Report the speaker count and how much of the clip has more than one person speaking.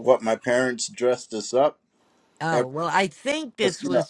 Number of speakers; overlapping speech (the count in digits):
2, about 9%